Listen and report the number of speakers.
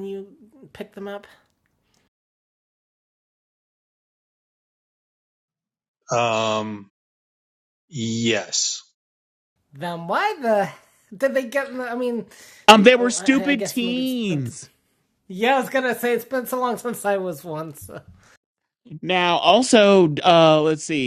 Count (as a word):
three